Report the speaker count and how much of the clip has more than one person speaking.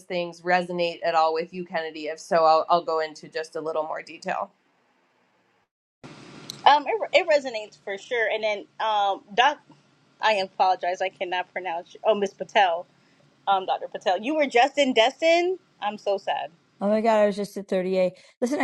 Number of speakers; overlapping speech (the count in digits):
3, no overlap